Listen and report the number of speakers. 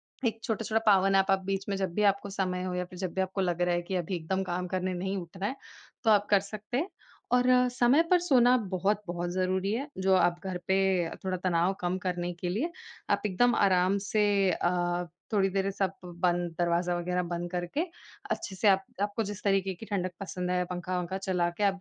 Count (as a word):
one